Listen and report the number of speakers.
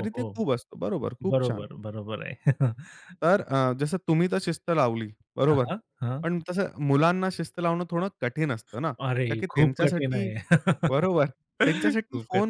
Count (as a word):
two